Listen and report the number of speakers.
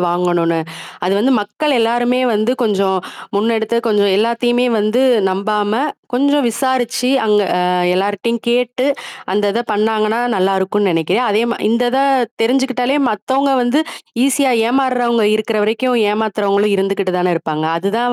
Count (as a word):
one